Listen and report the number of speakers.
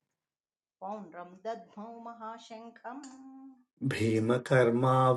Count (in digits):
2